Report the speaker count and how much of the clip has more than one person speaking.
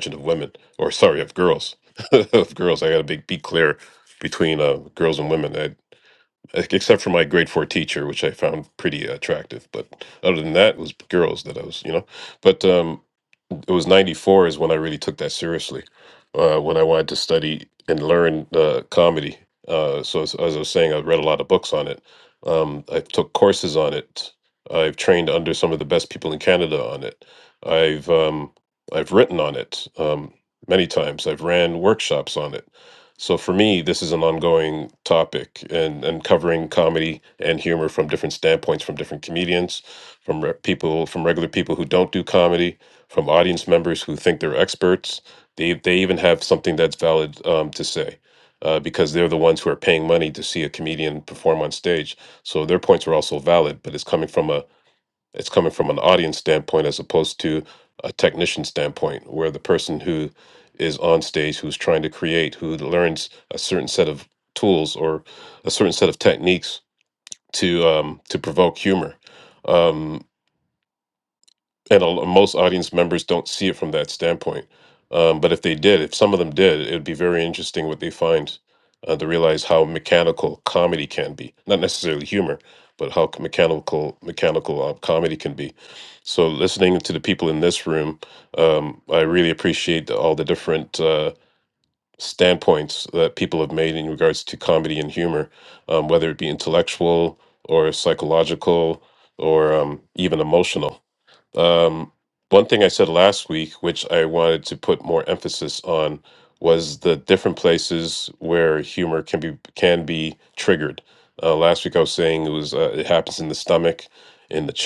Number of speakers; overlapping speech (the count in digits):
1, no overlap